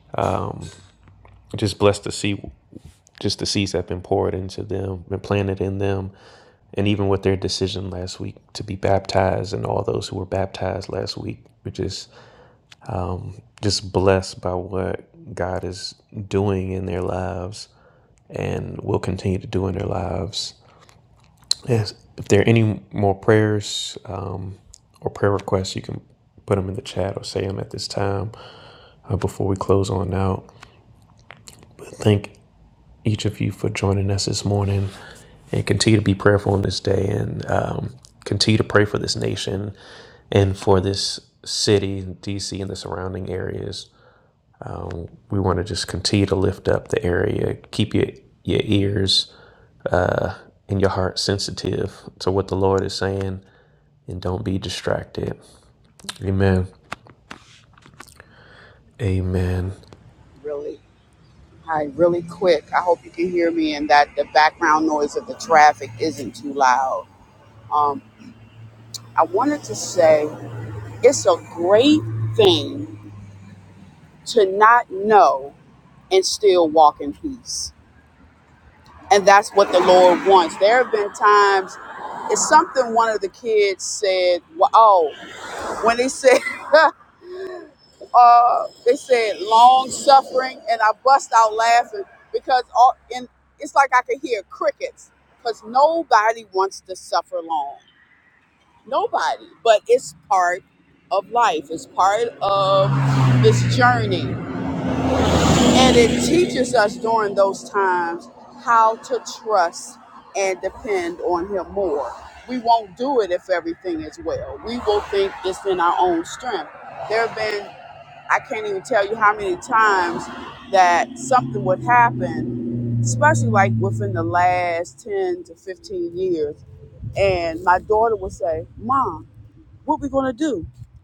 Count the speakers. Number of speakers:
2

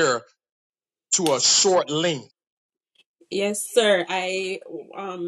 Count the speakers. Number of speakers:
2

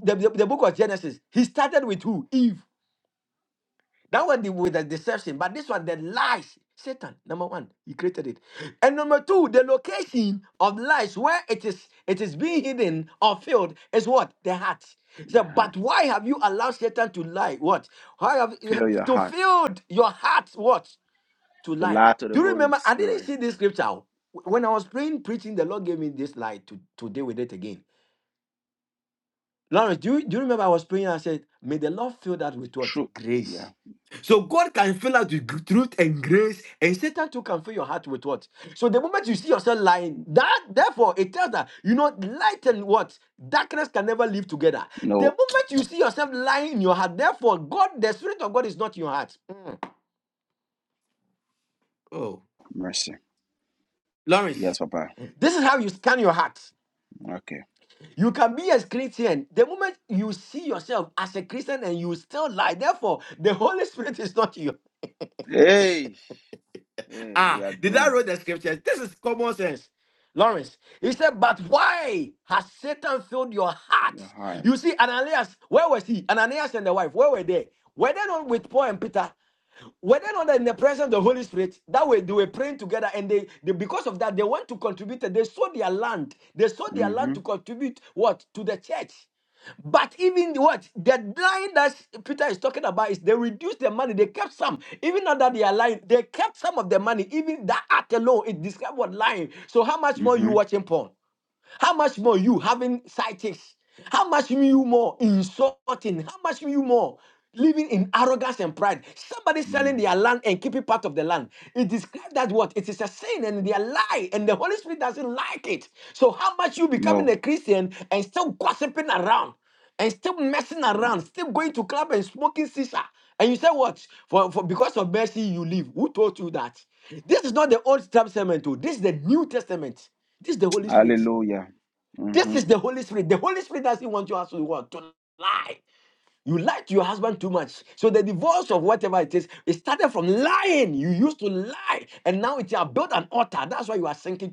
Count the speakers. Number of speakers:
2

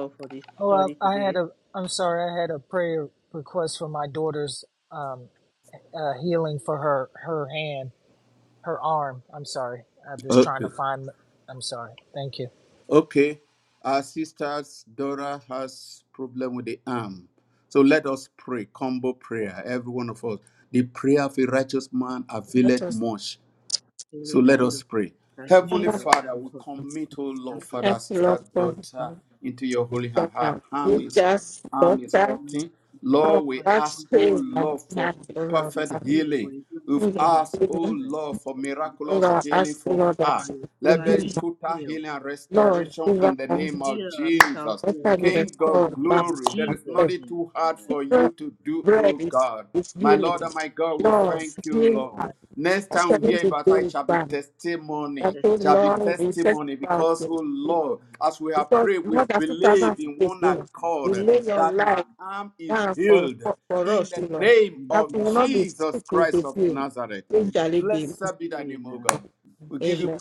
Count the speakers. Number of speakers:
4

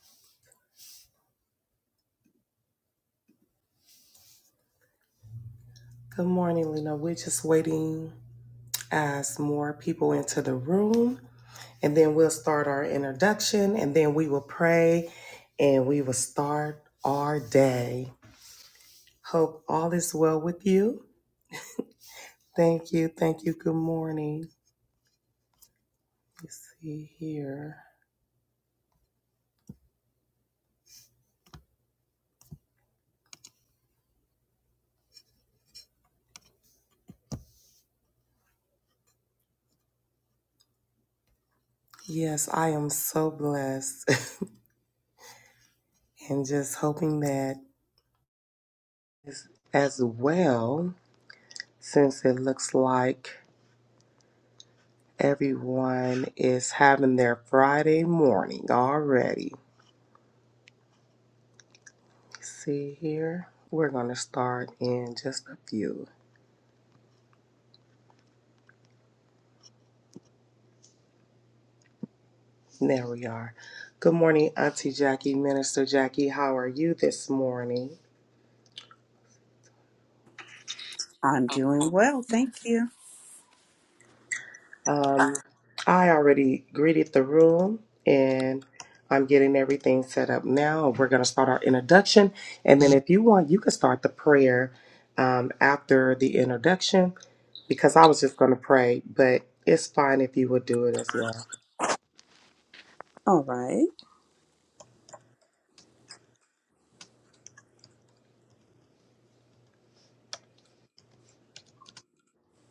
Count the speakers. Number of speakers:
2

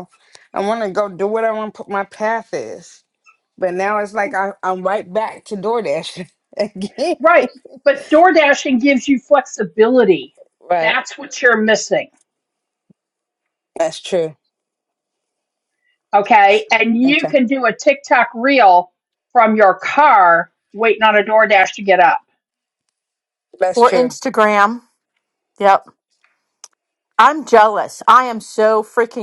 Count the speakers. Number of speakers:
3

